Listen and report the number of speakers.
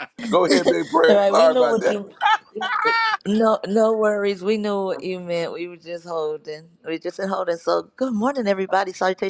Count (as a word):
two